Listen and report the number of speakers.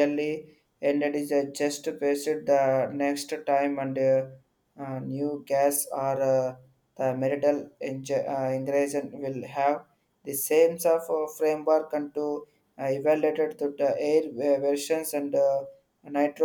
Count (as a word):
one